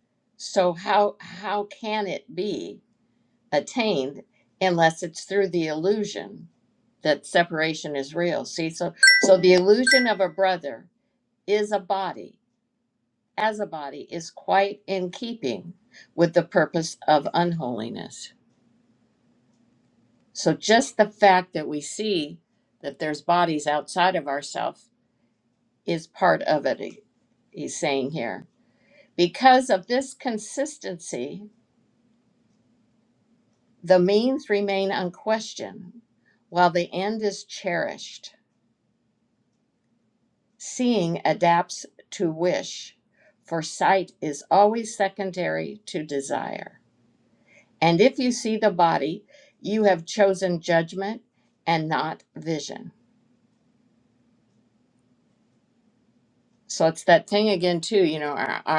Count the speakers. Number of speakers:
one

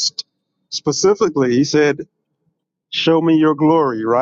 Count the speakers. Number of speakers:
one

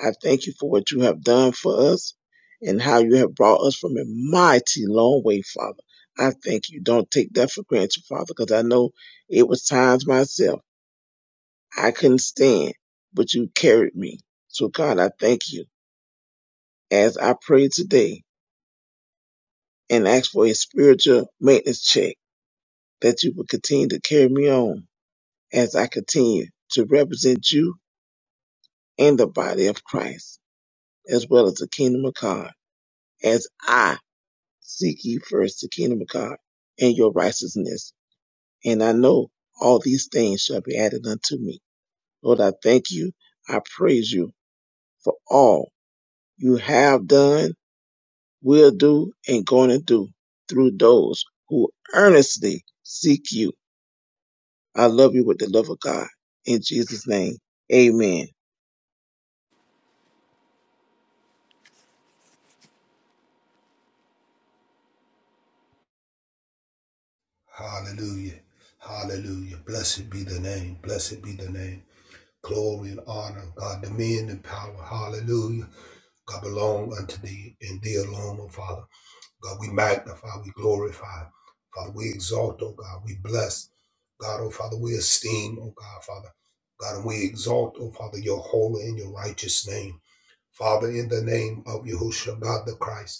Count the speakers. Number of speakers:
two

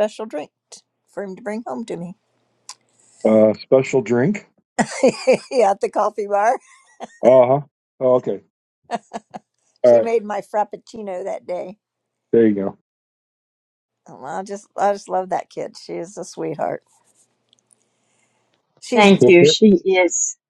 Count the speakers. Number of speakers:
three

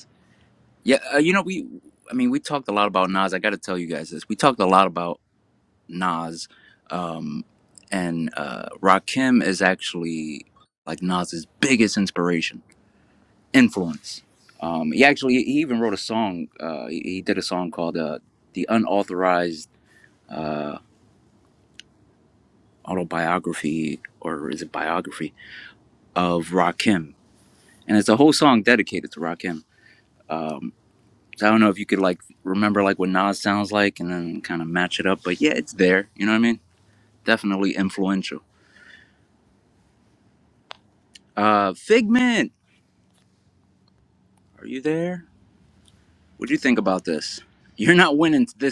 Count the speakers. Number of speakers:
one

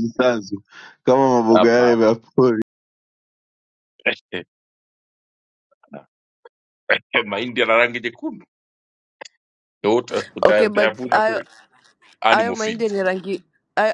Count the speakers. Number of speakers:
three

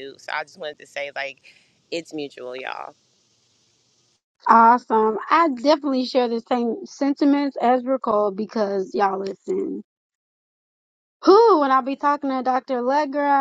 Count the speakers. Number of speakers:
two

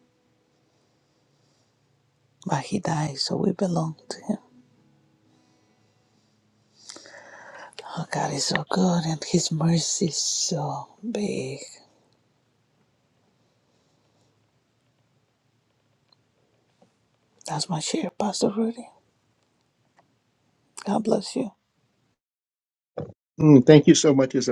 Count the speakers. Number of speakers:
two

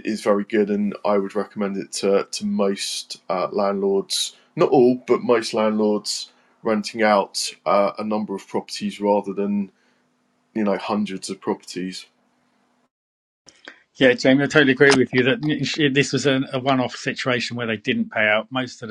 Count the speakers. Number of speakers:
two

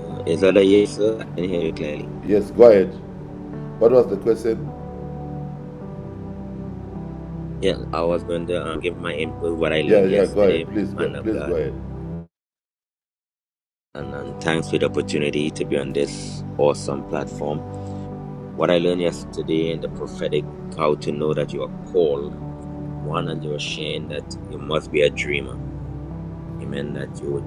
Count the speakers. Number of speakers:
two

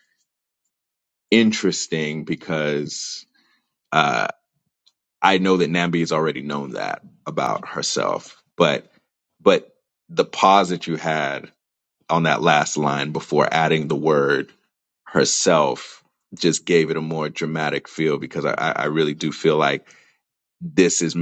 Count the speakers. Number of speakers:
one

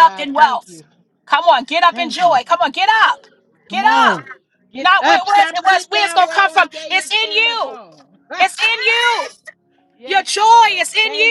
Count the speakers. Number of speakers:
two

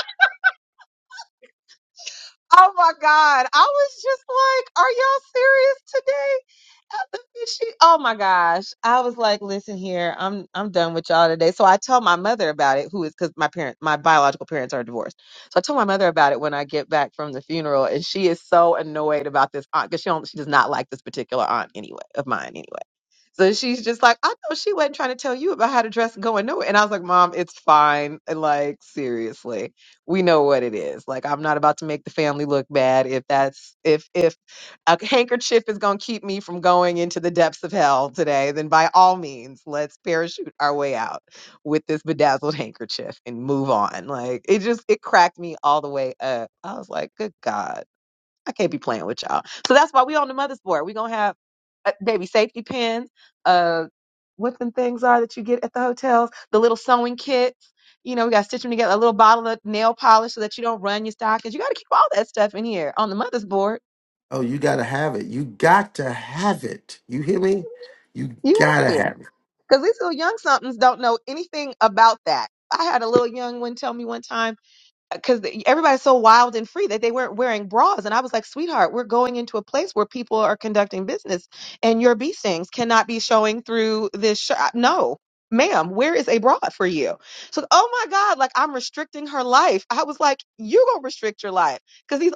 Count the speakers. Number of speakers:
two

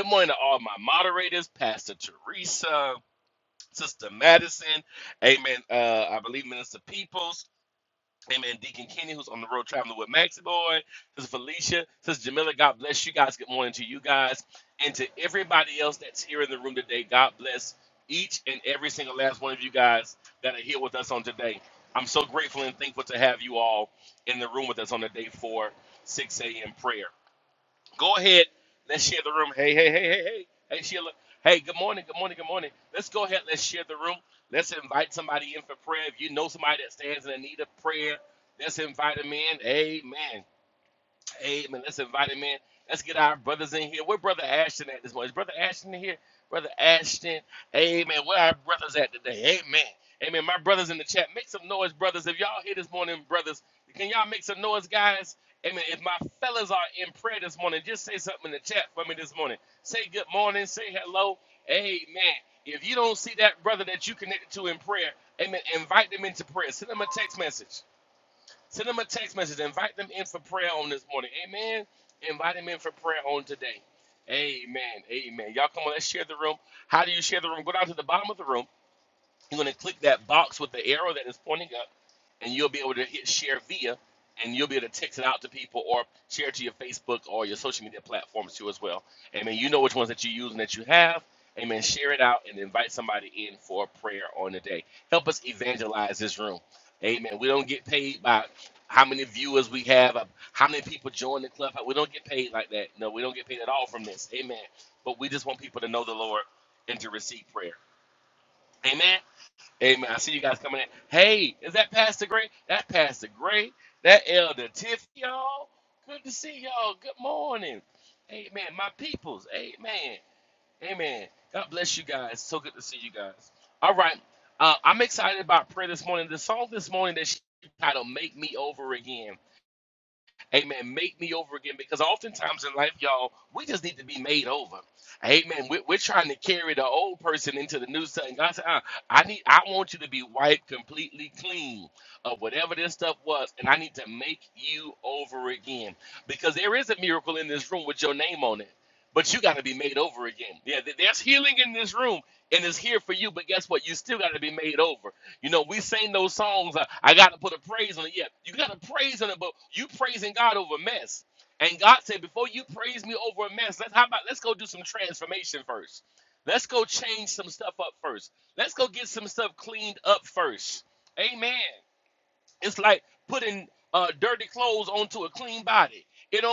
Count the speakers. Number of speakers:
one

